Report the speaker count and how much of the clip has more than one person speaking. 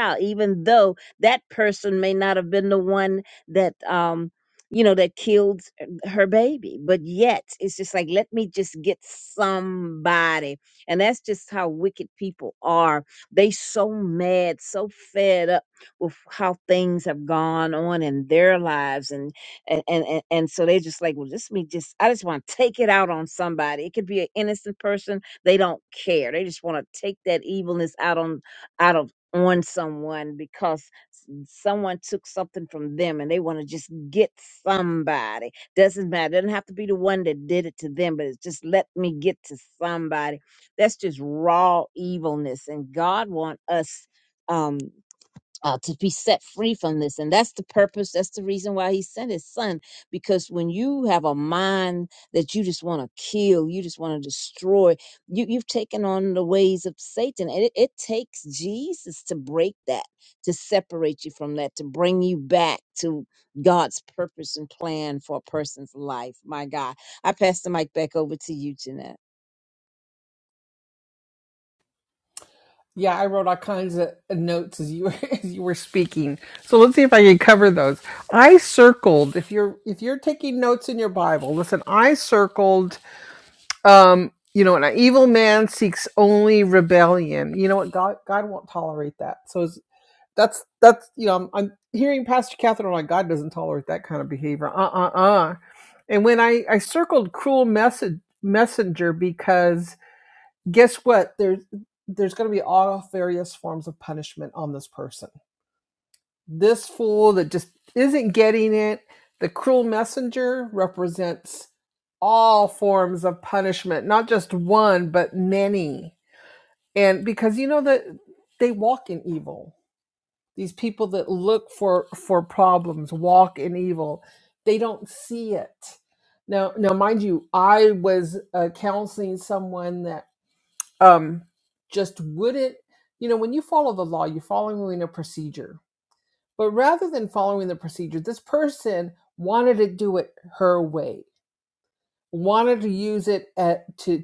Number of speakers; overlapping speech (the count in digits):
2, no overlap